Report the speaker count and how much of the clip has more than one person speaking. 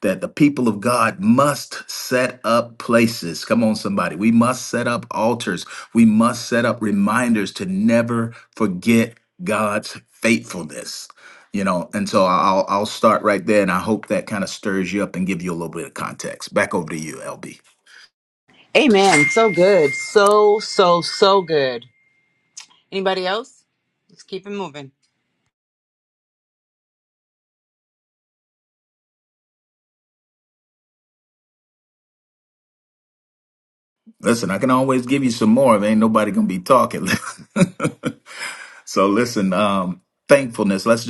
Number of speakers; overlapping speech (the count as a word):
two, no overlap